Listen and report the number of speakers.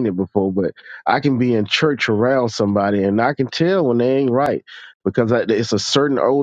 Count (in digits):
1